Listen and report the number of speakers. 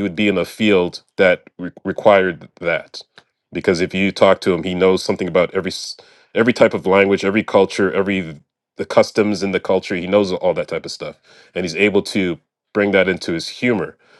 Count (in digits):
1